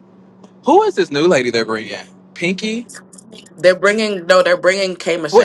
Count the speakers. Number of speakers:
2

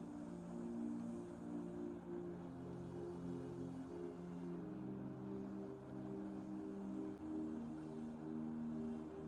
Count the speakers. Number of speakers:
0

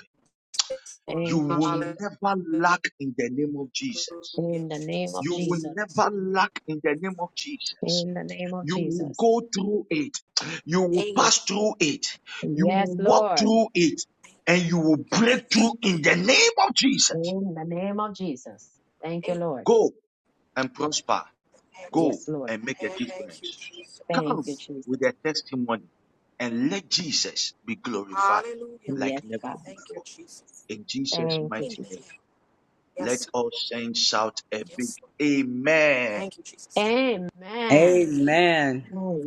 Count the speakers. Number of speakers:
4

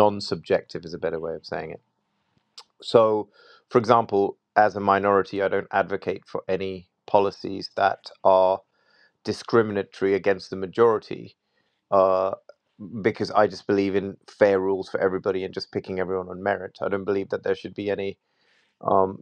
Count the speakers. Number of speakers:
1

